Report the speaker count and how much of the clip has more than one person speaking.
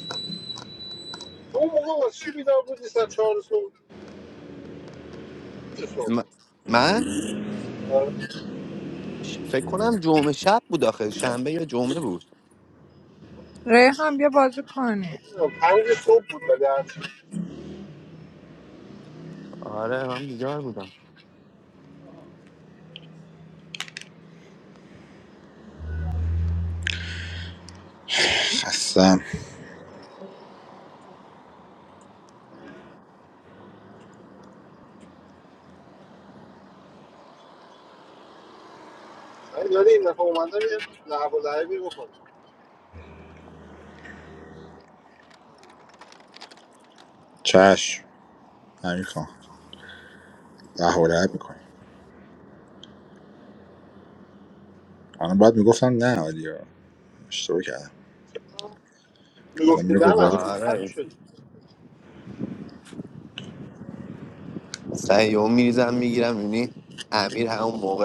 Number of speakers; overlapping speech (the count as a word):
four, about 2%